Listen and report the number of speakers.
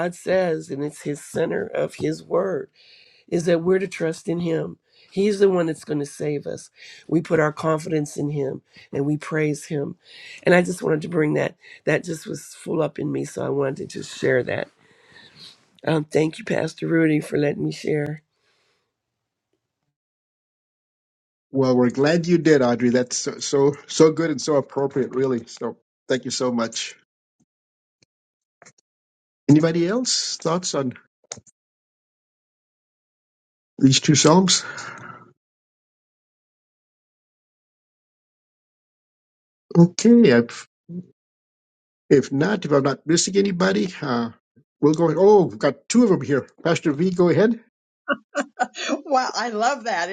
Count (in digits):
3